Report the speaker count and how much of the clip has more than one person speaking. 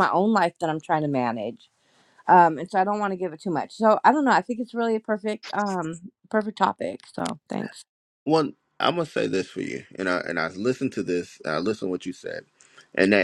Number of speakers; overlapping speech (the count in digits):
2, no overlap